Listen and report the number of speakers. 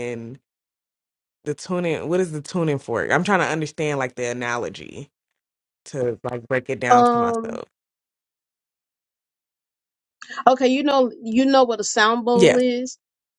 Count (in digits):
2